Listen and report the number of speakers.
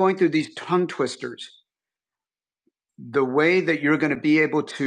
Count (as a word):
one